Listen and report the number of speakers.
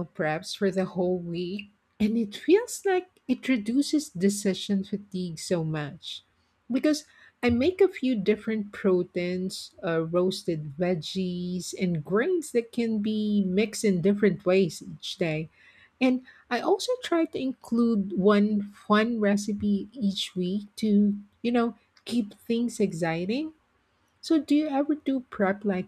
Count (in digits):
1